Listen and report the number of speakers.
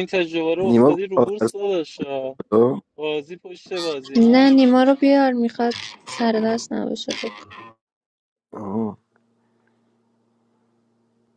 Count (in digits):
3